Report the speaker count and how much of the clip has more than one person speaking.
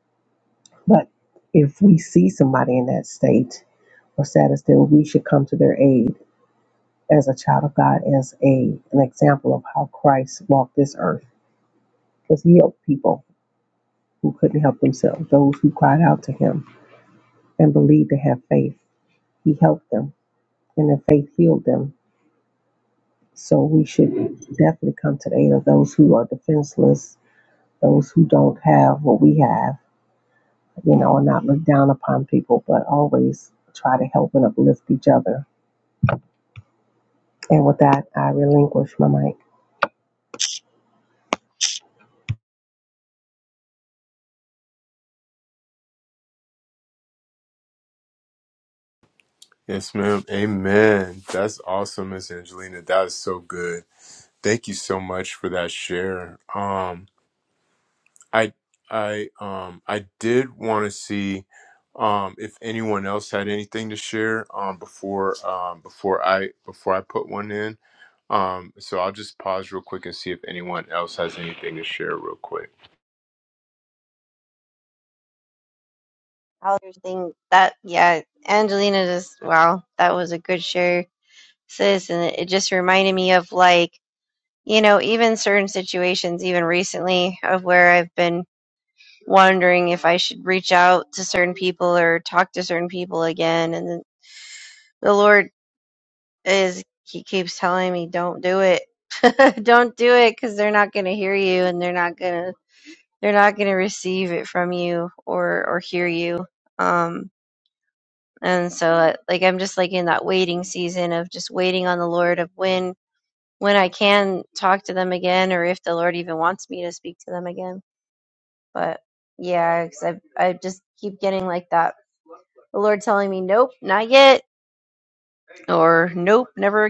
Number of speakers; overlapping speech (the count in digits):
3, no overlap